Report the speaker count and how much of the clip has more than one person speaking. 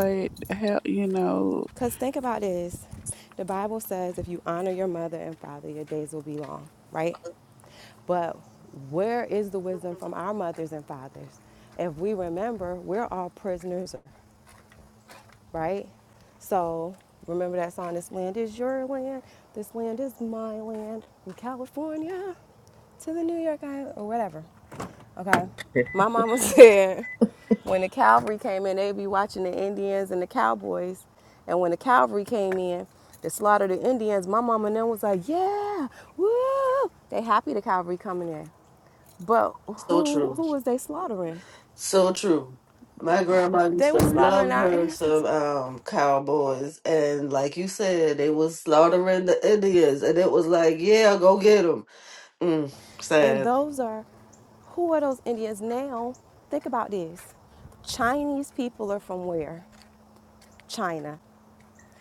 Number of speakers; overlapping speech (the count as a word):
three, about 4%